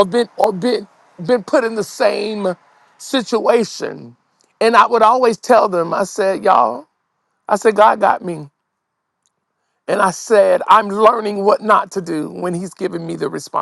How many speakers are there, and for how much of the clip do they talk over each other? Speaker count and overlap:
one, no overlap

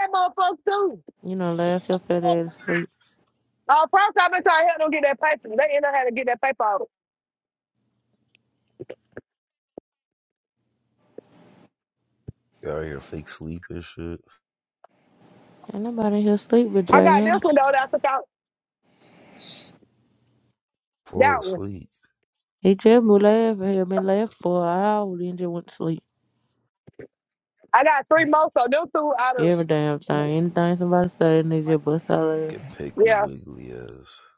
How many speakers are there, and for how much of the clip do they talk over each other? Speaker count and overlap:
three, about 4%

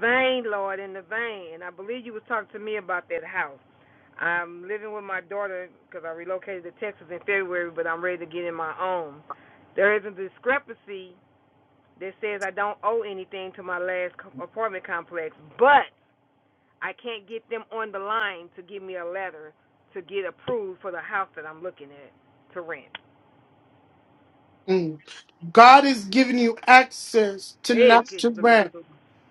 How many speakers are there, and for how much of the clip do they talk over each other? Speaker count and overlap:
two, about 2%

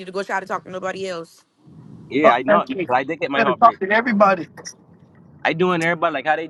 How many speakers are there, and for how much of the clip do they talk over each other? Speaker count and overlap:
three, about 16%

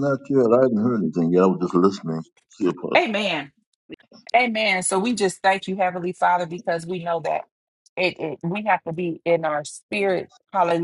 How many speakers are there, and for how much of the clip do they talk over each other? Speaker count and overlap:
two, about 1%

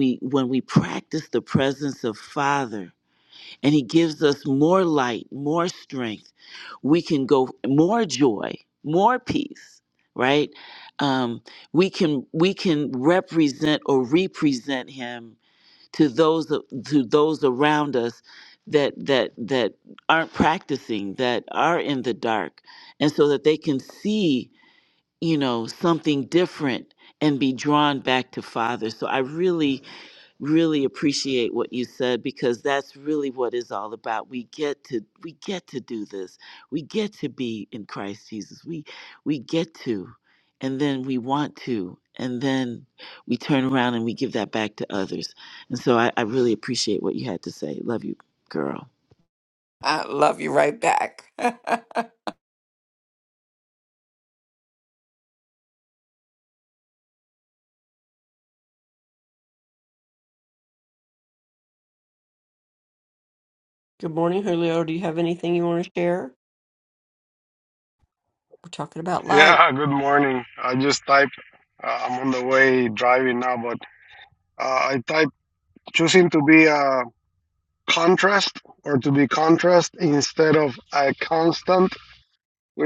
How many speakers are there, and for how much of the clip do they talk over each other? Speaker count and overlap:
four, under 1%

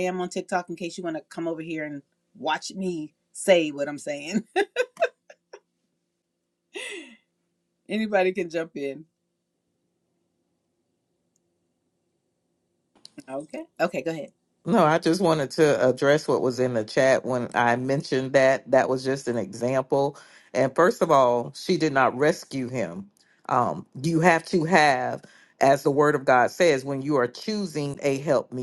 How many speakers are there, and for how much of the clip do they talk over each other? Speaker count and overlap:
two, no overlap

